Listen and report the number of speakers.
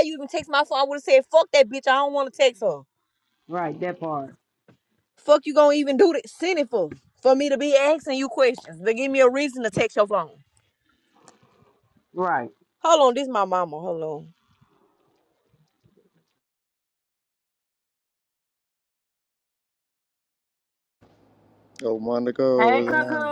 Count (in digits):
3